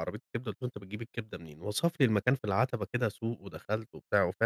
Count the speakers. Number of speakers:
1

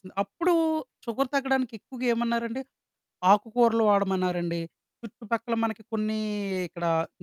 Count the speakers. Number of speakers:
1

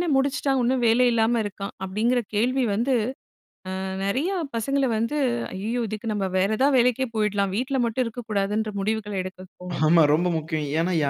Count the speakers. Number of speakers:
2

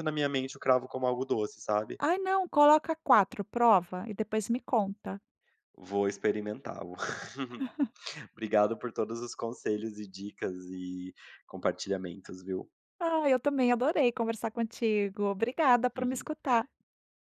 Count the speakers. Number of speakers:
2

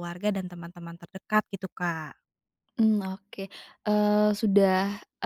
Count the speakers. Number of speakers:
2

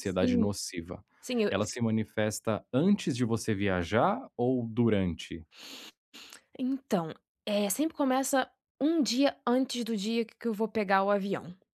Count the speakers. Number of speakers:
2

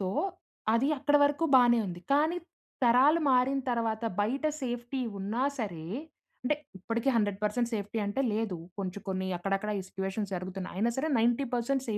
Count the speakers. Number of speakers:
1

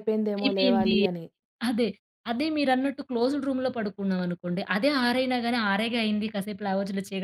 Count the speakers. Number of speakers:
2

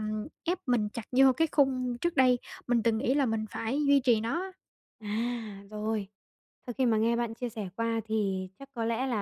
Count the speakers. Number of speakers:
2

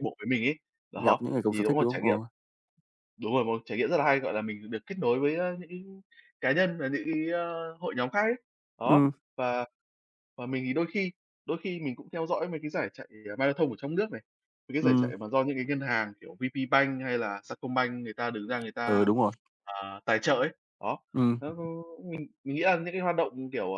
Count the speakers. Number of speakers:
2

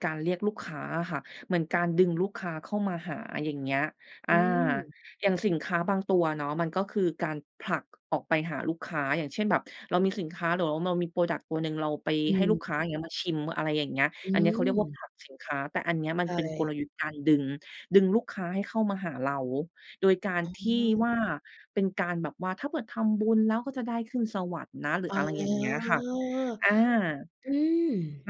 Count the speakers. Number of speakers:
2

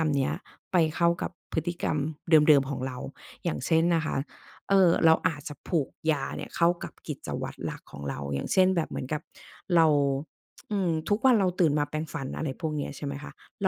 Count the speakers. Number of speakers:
1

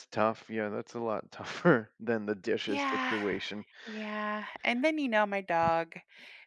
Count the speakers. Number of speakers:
2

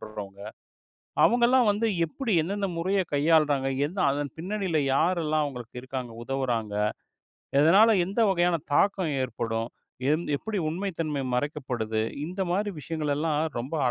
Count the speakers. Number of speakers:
1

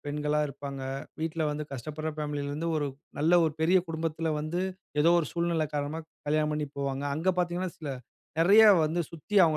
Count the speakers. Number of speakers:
1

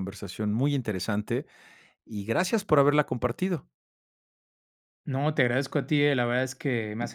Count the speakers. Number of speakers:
2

